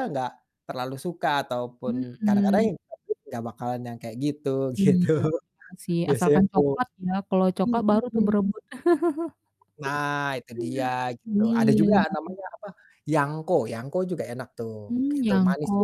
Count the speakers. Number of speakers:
2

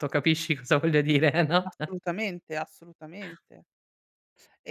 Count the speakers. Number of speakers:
2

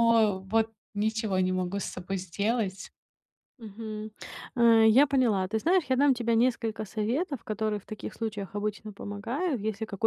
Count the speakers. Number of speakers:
2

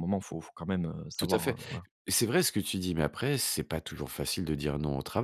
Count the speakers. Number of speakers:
2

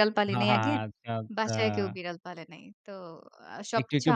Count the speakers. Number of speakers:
2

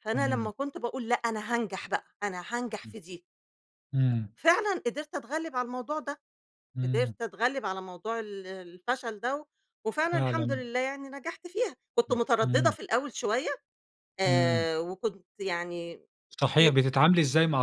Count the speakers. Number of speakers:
2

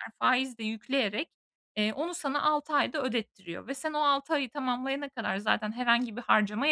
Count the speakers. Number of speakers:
1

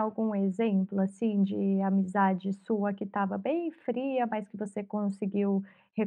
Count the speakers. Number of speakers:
1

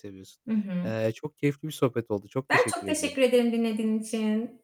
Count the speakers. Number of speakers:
2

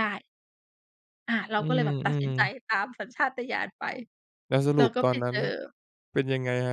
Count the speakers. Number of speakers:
2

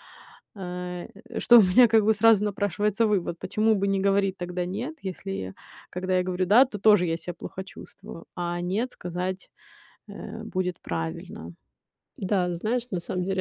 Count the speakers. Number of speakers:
2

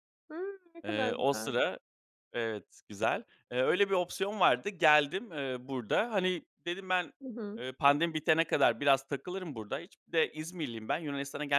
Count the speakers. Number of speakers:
2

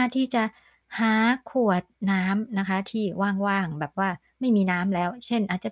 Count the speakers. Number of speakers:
1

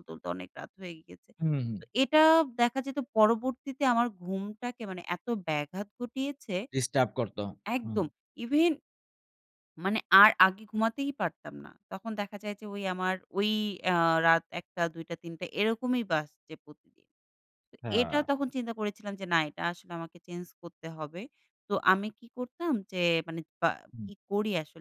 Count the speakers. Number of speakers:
2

